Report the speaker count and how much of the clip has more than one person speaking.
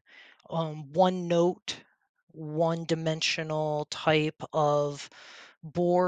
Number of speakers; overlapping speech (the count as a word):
one, no overlap